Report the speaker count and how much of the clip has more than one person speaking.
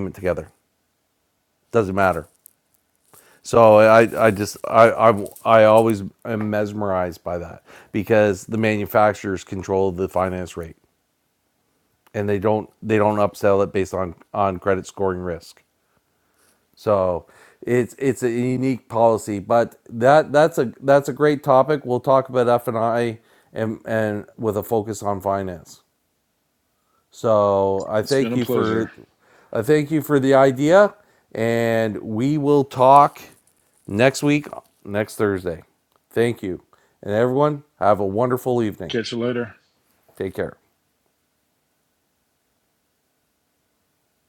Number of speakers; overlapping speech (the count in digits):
2, about 2%